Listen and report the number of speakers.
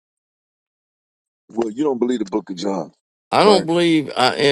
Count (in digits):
2